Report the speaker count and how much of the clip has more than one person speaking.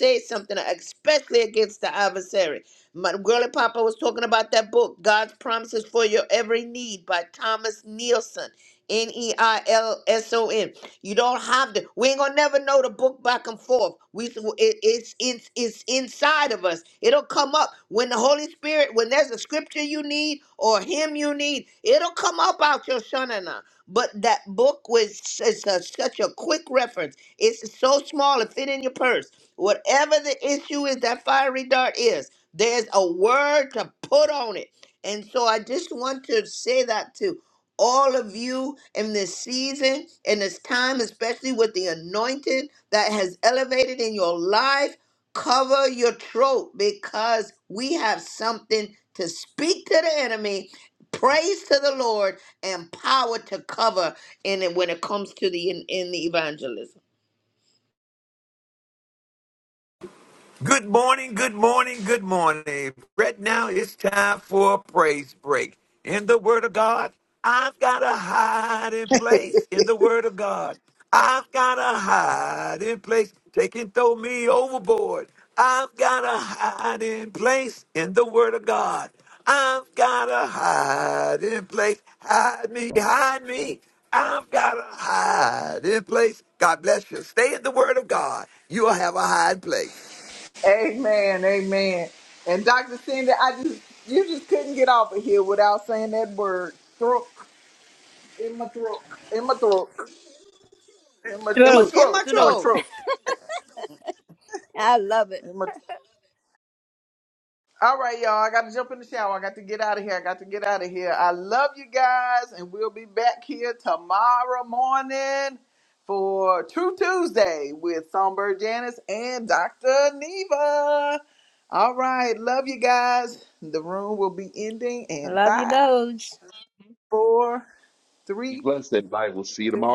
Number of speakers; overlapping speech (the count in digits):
5, about 1%